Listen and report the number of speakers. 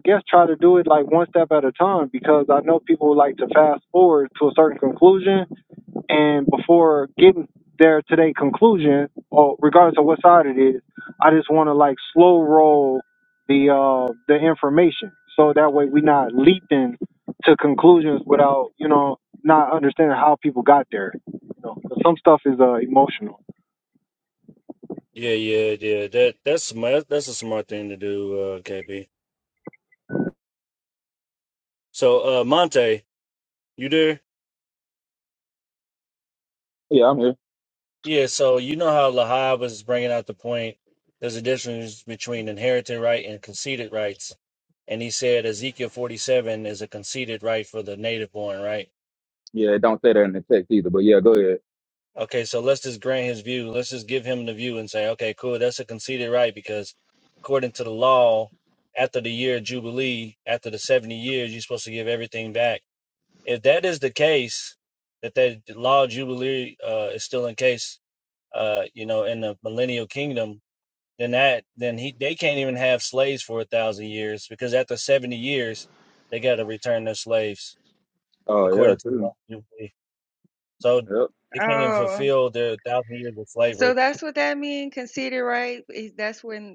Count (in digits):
4